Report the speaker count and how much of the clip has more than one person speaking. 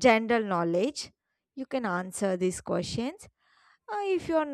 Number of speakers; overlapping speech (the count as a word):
one, no overlap